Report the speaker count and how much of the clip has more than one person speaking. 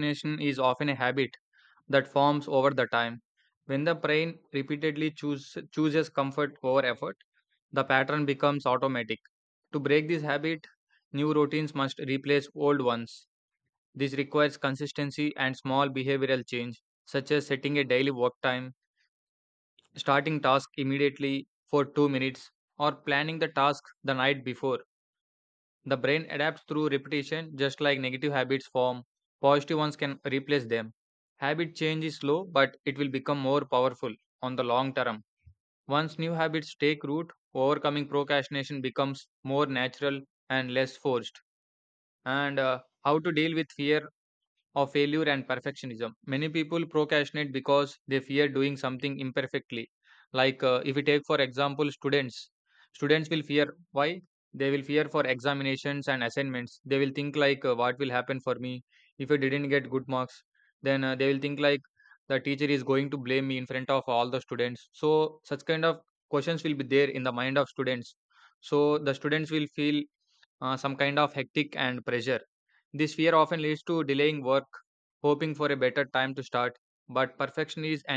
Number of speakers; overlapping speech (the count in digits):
1, no overlap